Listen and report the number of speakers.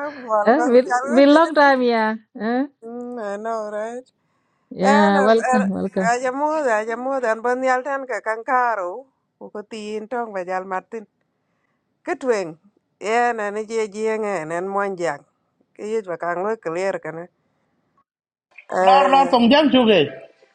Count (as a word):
three